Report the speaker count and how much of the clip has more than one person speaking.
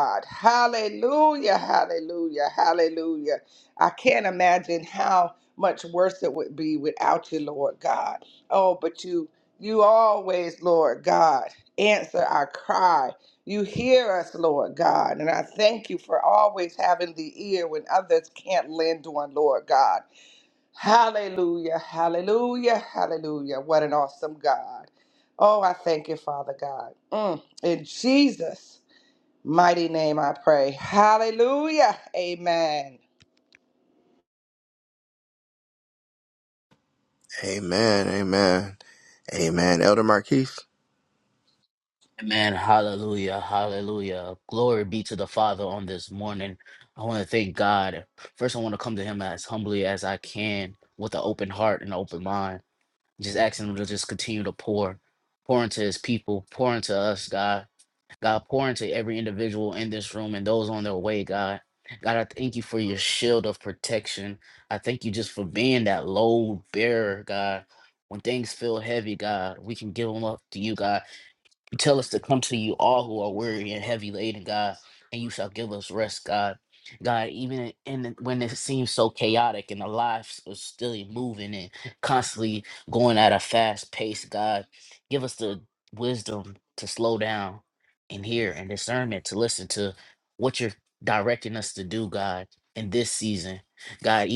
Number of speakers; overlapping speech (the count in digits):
3, no overlap